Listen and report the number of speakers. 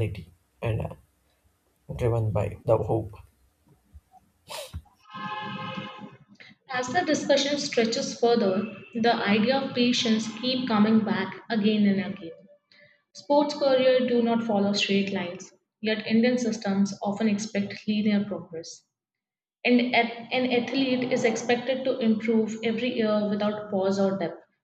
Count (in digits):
2